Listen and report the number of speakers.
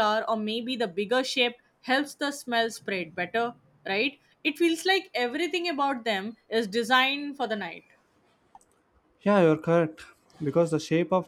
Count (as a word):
two